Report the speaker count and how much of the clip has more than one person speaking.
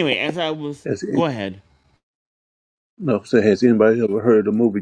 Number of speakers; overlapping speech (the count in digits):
2, about 2%